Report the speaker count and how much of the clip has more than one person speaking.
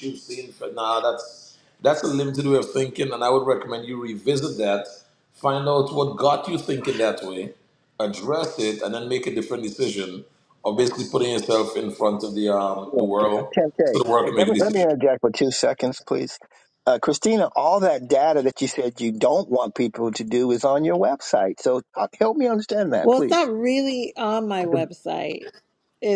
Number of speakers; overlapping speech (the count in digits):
3, about 6%